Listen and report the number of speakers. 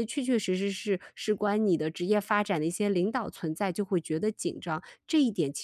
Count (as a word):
one